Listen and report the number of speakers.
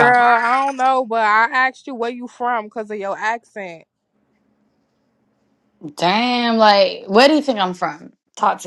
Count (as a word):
two